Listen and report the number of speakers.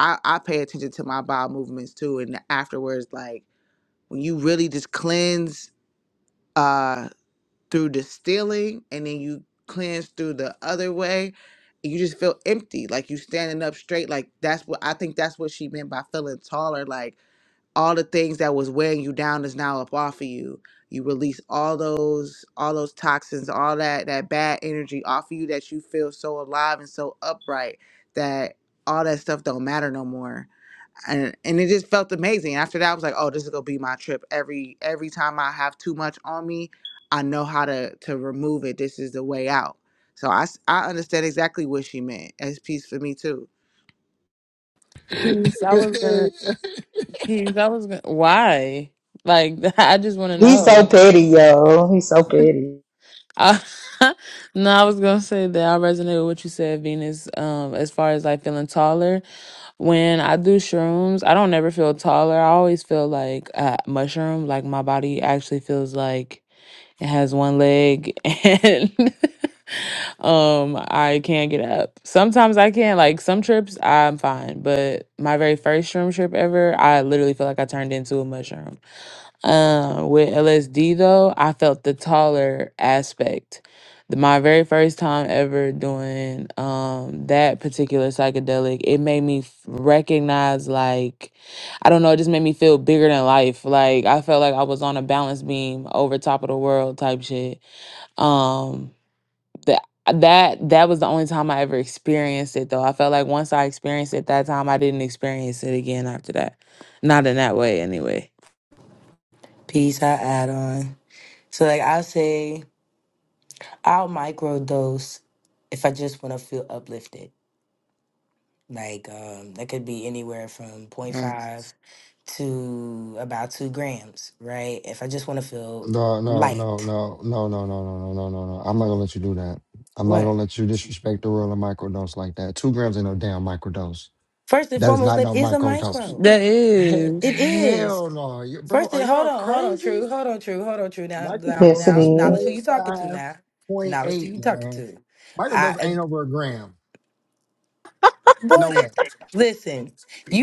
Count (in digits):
5